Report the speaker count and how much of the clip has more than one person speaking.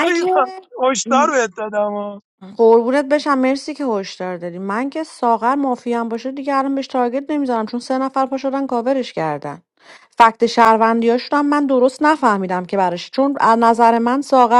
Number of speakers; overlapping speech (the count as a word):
two, about 2%